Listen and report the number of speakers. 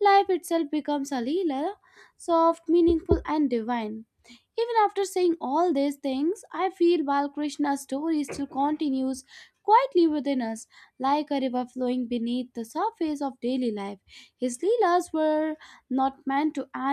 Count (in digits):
1